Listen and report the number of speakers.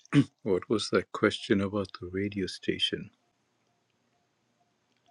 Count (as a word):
one